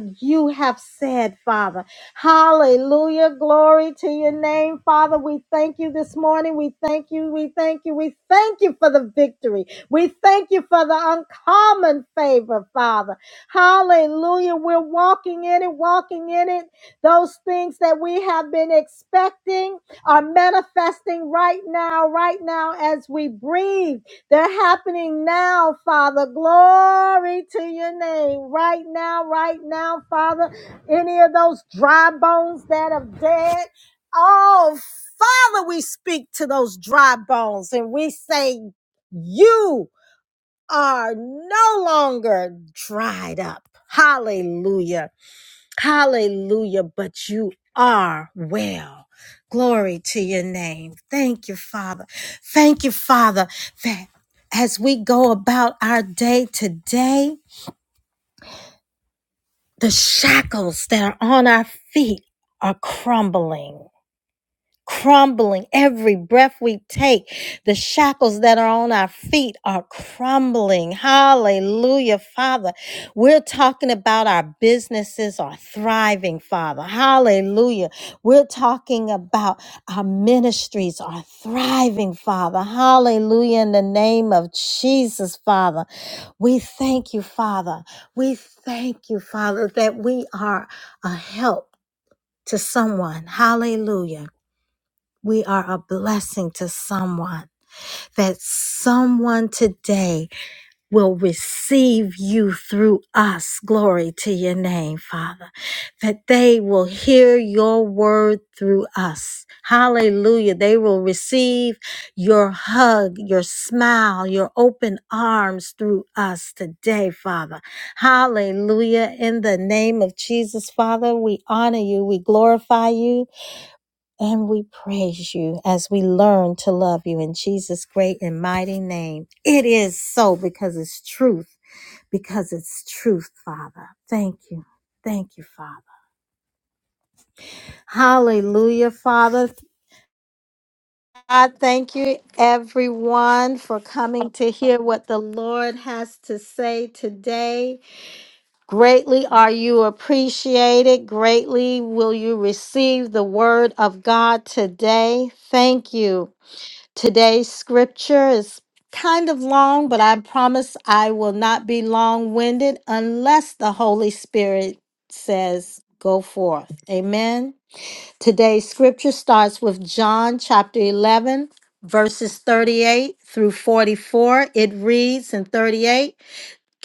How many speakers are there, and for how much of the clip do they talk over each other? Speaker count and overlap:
1, no overlap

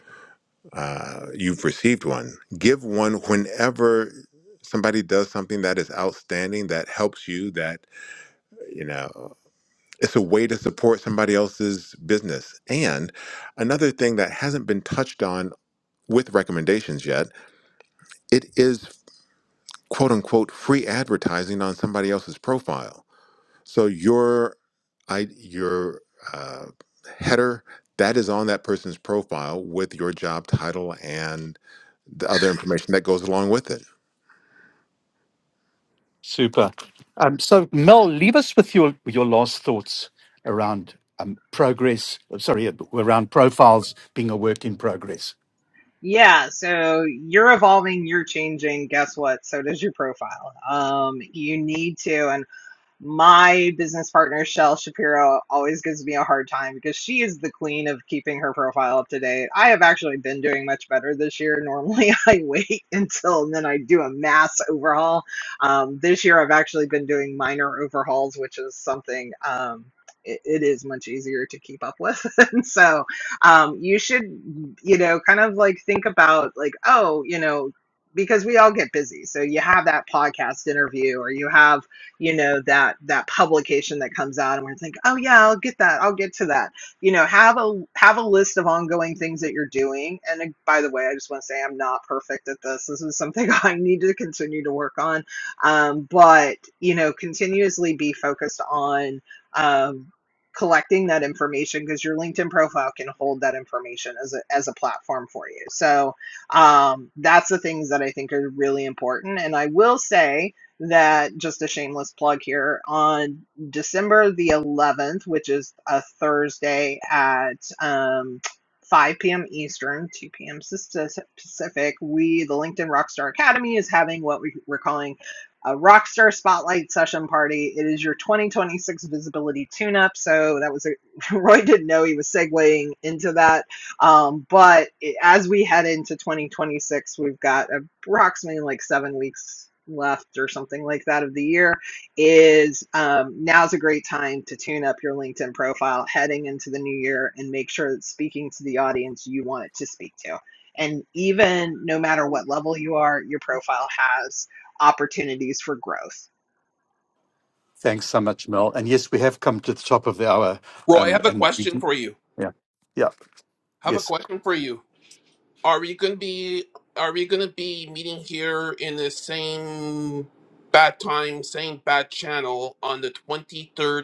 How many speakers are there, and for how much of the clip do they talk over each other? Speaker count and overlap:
4, about 1%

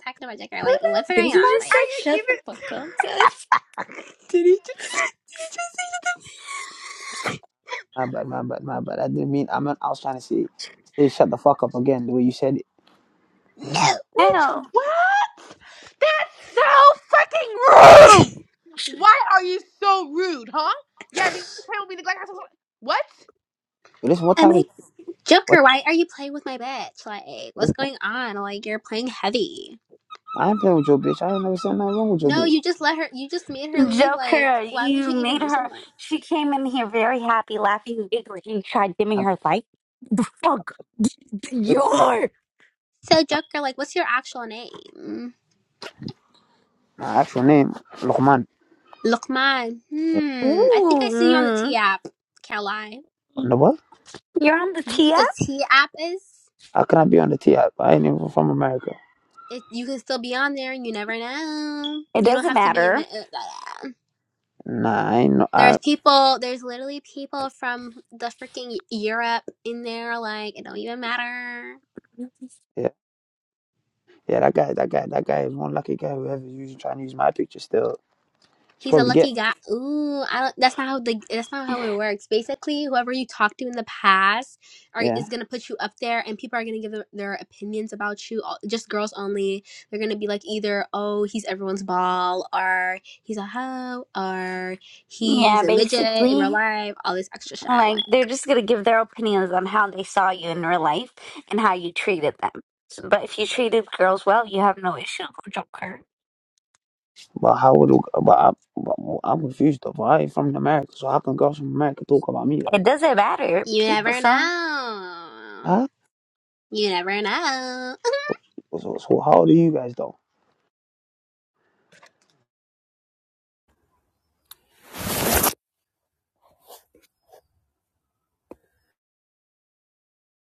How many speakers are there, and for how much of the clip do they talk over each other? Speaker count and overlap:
4, about 9%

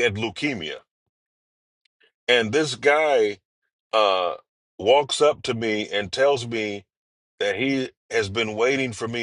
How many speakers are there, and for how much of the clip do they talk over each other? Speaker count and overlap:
1, no overlap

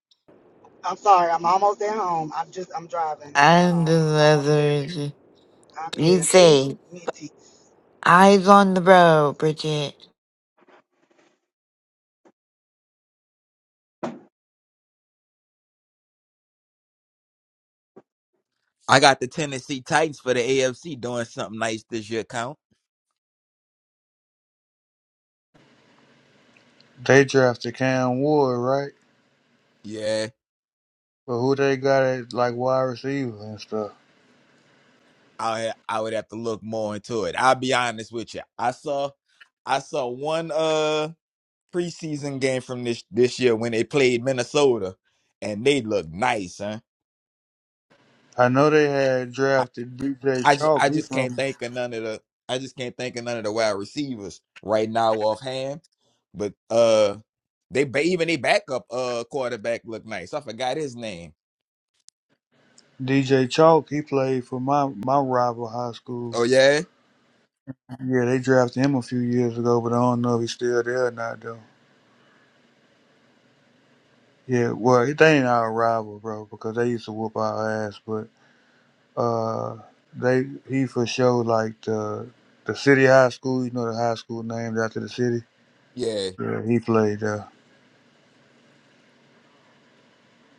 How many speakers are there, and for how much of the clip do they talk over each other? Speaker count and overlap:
4, about 4%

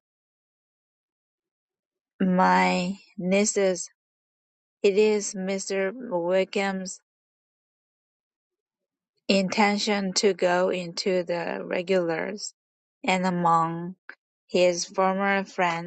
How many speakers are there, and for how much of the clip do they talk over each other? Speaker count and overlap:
1, no overlap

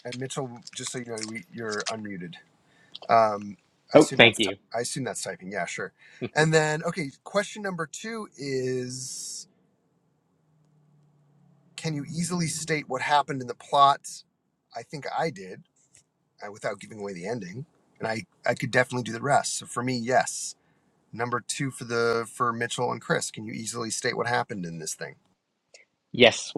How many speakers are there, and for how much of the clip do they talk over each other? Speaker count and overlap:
2, about 2%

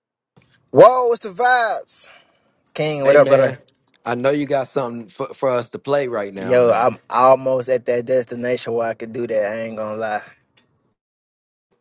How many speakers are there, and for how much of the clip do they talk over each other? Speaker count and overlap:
2, about 8%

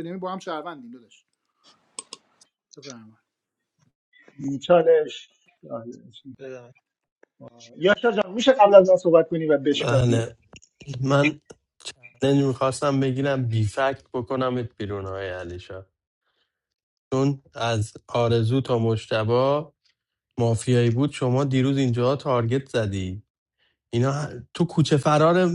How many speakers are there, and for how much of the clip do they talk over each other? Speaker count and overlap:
3, about 2%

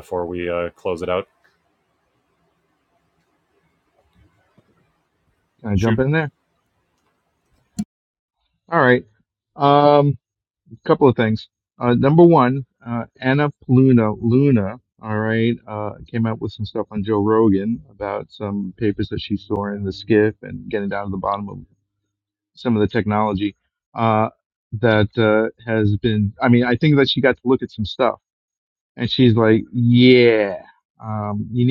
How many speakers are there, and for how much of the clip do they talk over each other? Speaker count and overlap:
2, about 1%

